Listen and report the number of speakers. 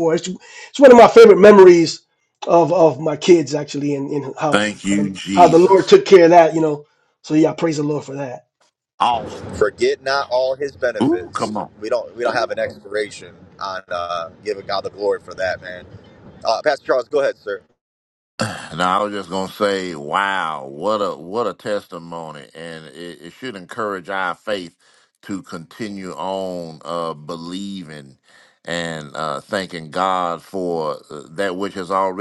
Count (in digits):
3